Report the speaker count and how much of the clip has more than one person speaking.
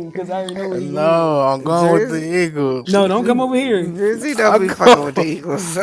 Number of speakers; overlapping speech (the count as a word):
three, about 53%